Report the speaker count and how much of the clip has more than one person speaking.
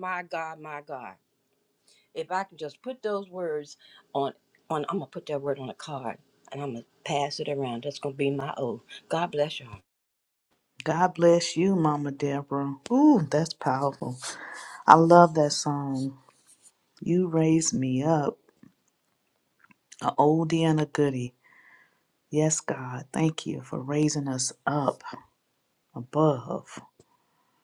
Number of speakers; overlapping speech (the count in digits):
2, no overlap